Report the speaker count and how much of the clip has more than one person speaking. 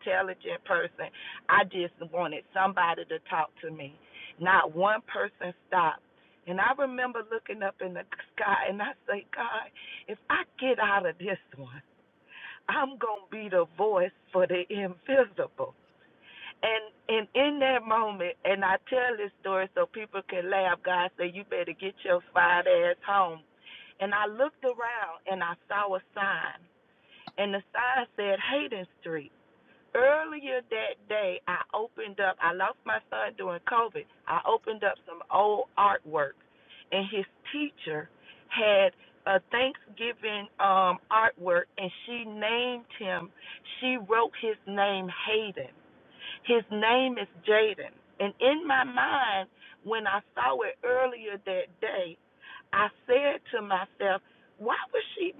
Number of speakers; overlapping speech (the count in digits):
1, no overlap